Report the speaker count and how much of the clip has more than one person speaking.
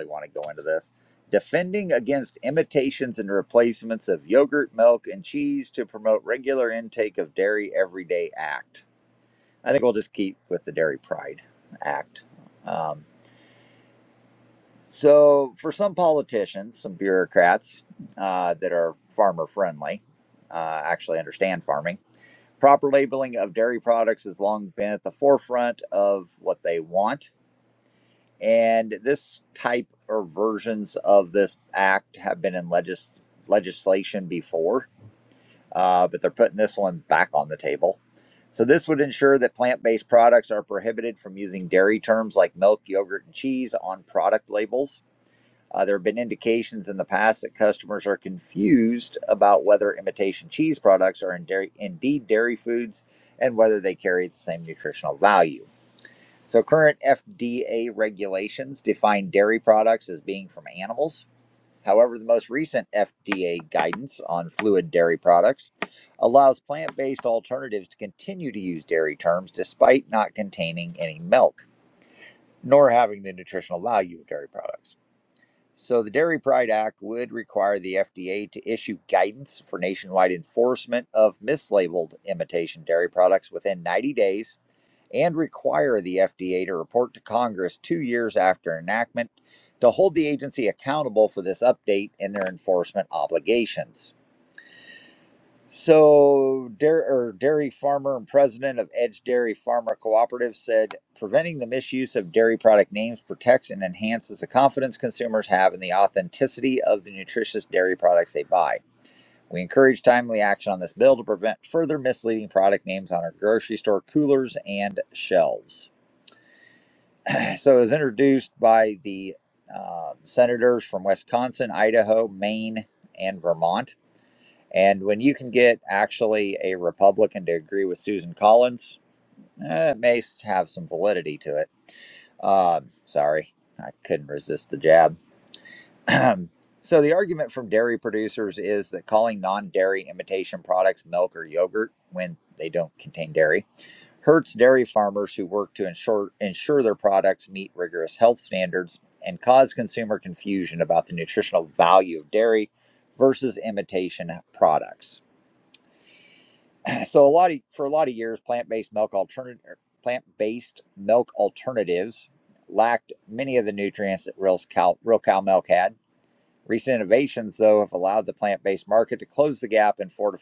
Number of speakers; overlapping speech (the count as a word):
one, no overlap